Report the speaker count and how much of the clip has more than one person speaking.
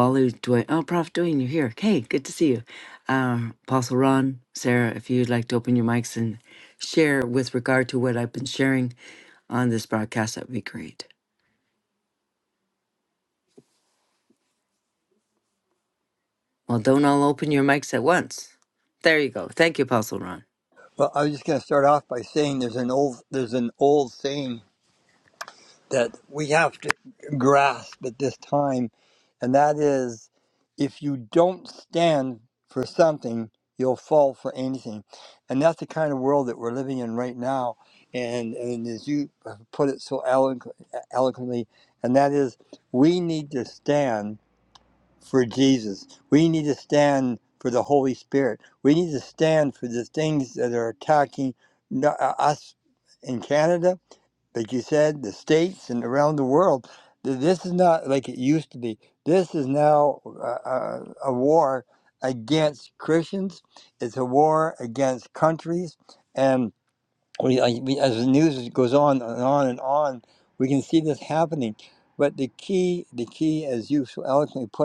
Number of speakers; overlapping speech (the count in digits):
2, no overlap